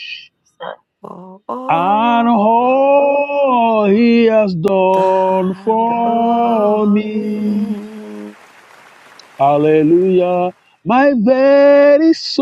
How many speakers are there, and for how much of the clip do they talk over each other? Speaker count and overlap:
2, about 27%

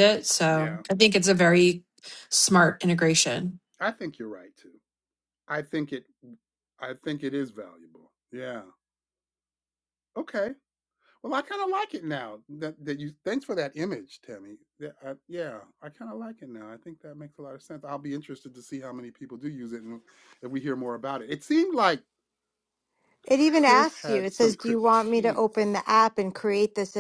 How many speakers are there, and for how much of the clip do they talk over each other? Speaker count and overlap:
3, about 8%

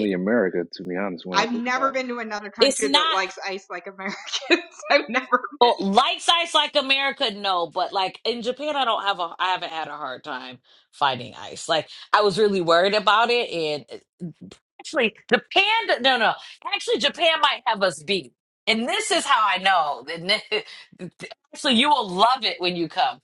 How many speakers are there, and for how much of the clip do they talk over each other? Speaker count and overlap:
3, about 7%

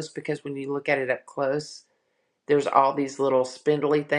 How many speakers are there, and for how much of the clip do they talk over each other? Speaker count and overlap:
1, no overlap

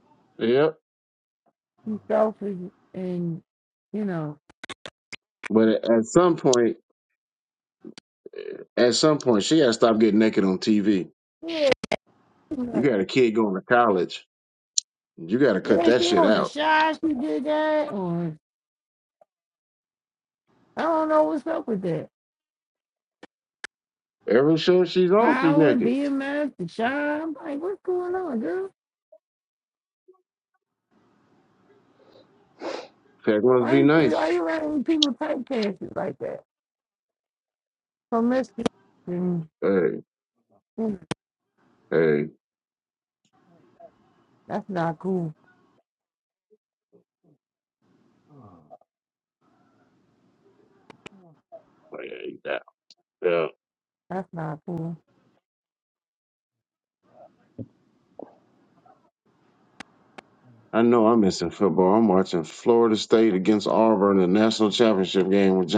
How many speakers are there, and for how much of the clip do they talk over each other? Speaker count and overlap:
2, about 4%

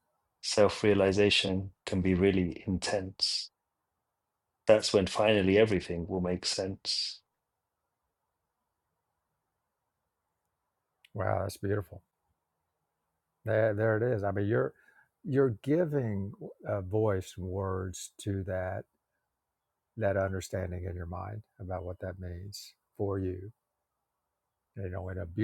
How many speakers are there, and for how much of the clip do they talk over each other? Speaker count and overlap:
2, no overlap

